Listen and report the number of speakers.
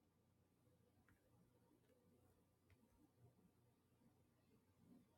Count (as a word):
zero